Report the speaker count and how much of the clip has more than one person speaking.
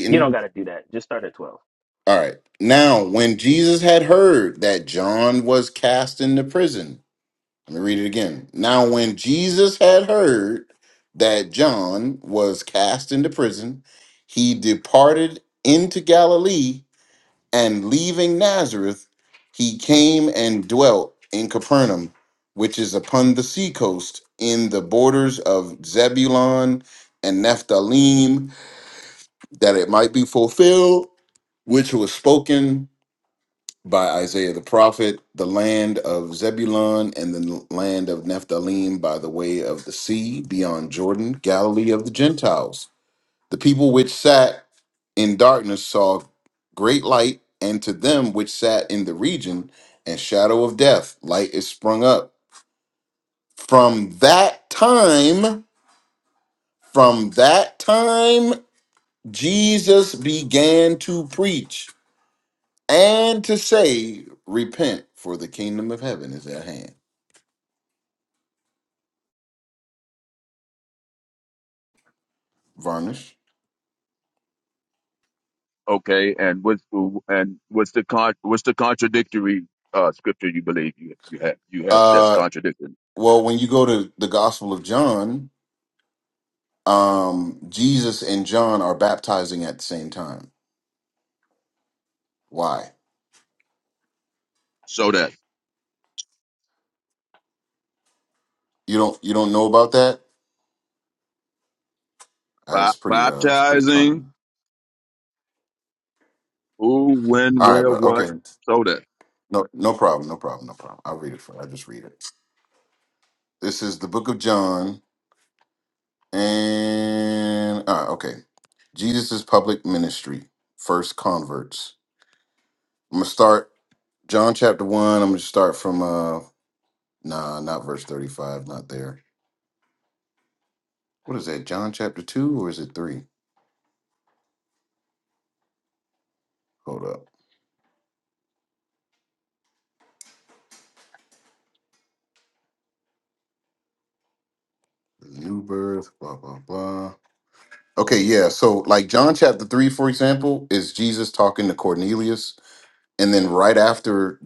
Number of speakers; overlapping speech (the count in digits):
3, about 2%